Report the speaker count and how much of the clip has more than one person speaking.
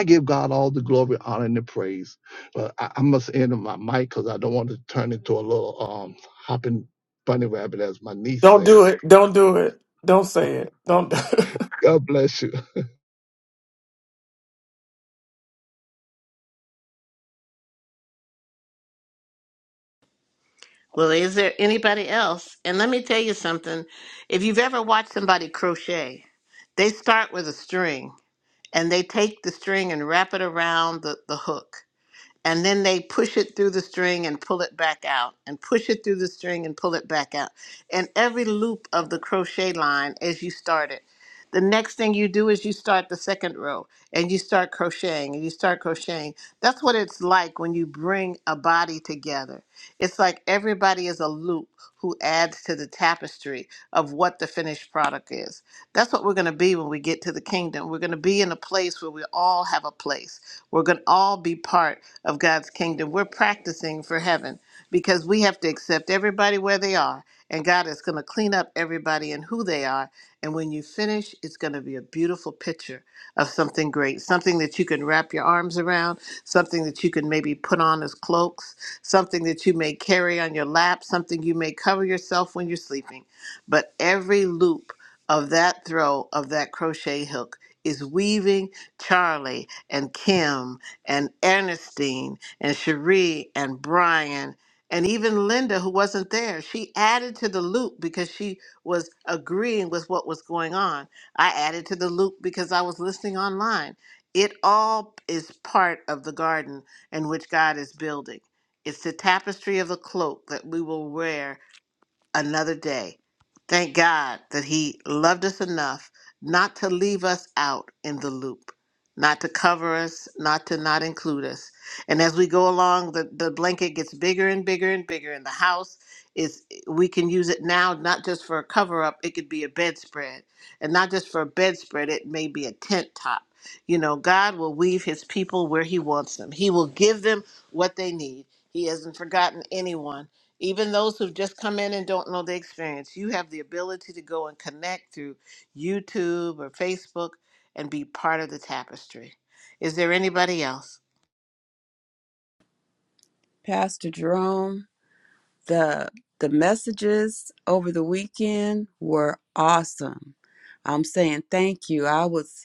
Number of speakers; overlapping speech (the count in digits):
4, under 1%